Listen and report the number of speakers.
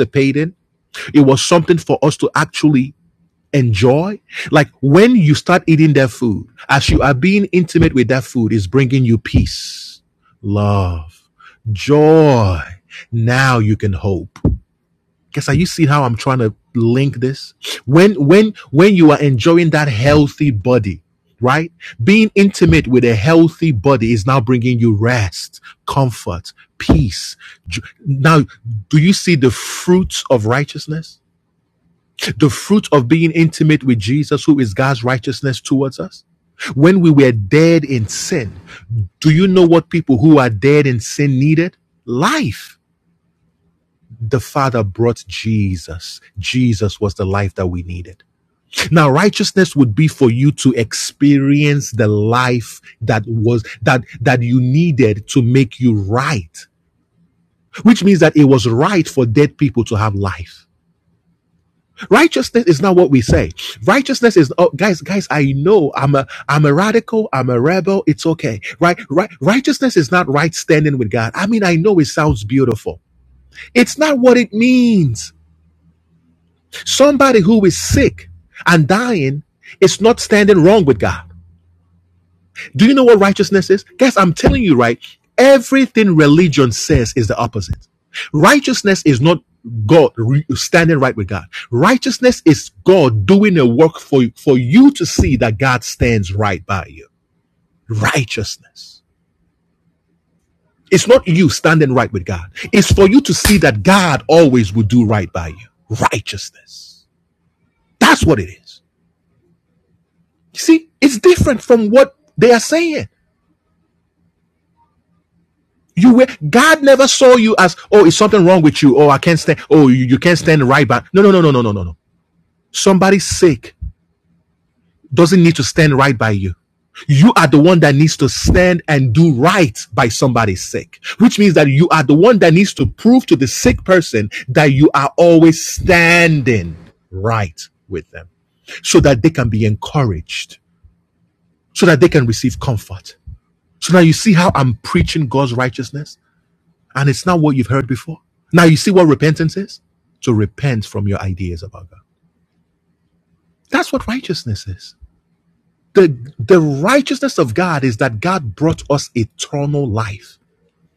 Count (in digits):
1